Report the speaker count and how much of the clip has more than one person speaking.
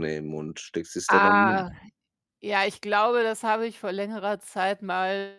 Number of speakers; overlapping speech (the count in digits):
2, about 10%